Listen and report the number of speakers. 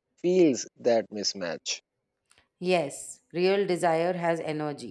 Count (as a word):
two